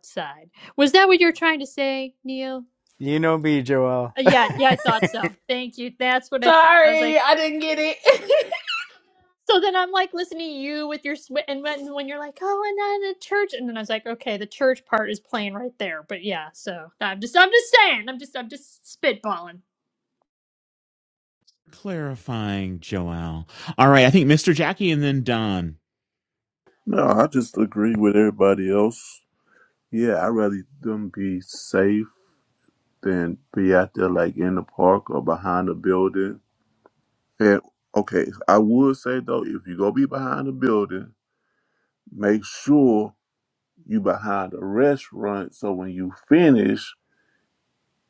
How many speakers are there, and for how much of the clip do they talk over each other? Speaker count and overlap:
5, about 1%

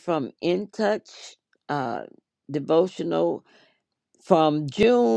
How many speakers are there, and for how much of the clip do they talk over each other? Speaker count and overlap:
1, no overlap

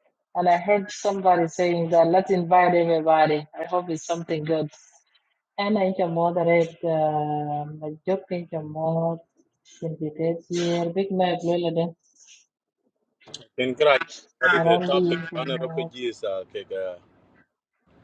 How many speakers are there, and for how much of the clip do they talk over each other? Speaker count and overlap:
2, about 4%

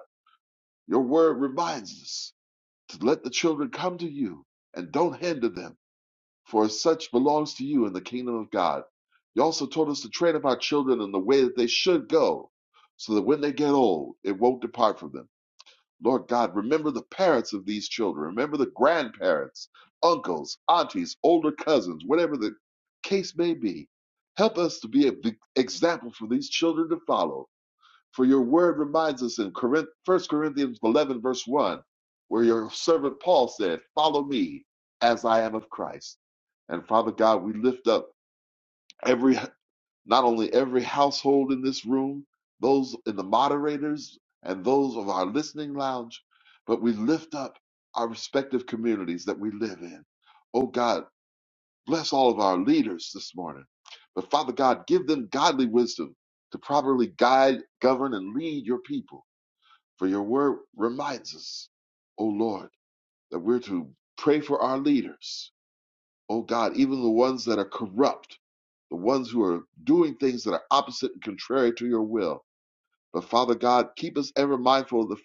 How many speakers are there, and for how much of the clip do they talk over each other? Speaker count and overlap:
1, no overlap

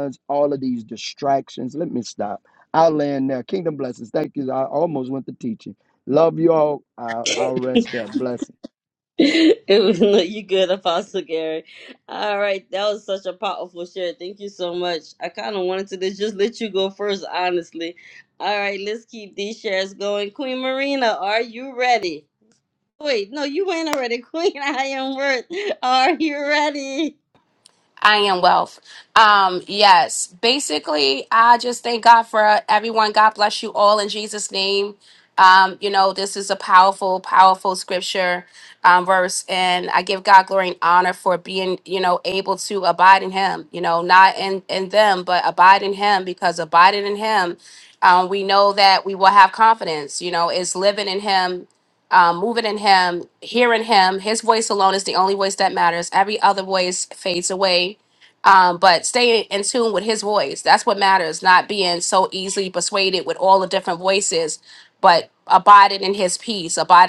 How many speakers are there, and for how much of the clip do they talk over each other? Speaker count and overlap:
3, no overlap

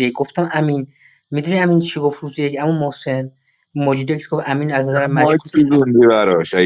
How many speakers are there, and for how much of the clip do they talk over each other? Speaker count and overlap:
2, about 10%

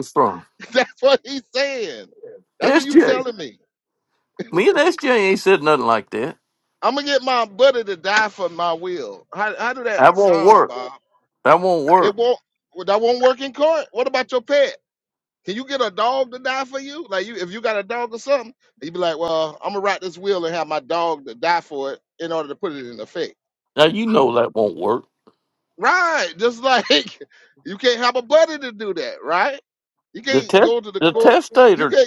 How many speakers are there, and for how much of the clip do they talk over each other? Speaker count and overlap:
2, about 8%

